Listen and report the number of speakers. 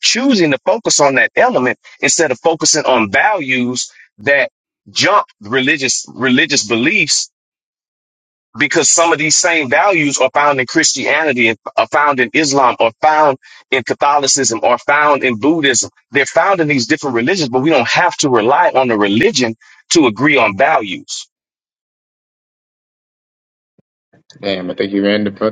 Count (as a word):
two